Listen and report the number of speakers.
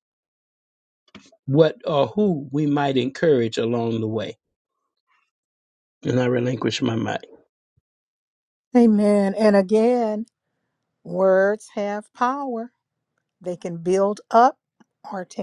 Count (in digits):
2